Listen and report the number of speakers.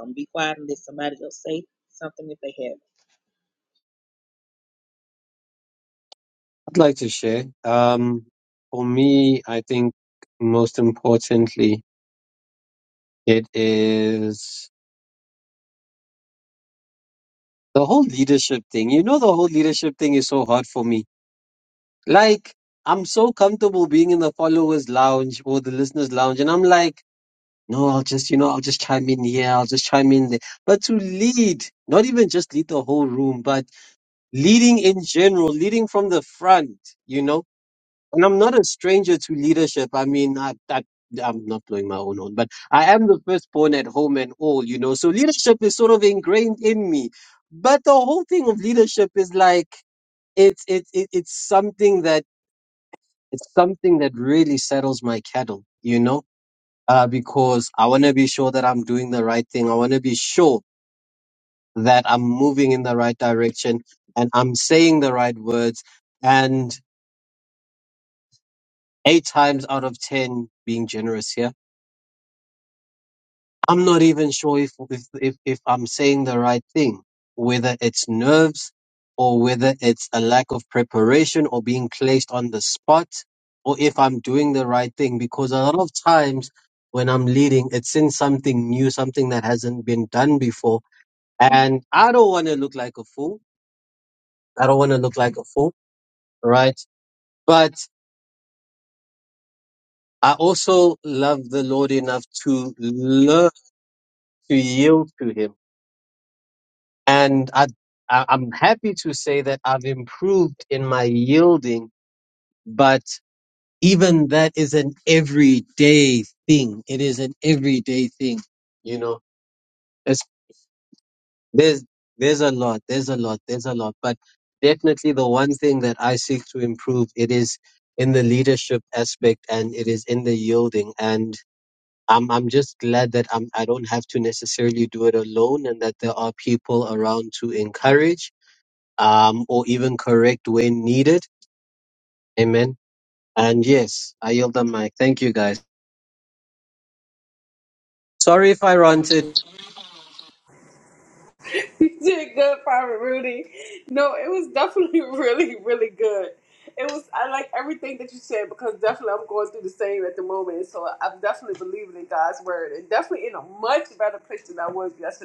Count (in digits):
3